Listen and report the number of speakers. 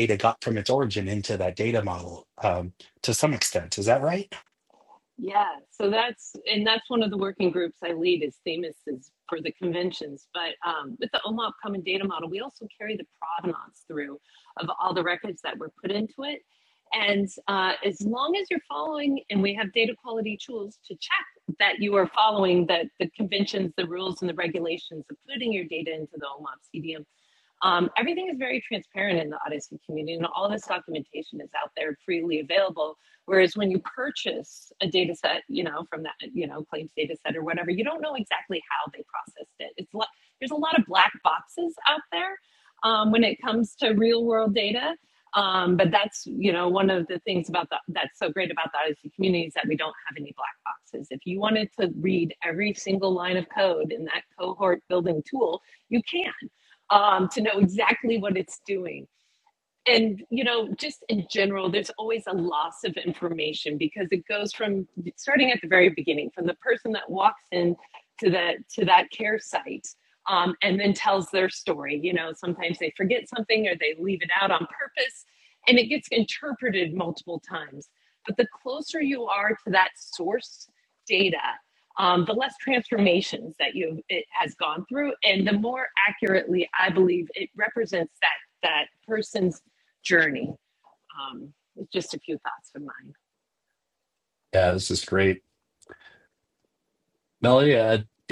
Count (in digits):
3